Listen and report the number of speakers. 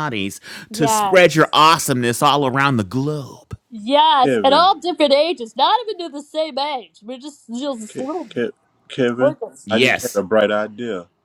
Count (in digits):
3